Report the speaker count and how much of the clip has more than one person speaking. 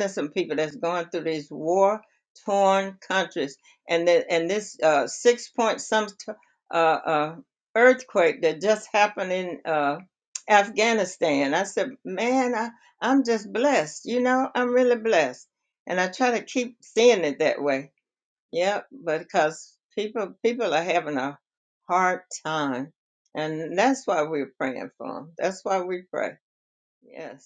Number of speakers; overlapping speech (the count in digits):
1, no overlap